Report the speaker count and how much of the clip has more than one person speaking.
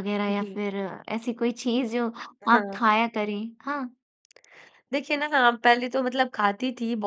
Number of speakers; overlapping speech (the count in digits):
2, about 10%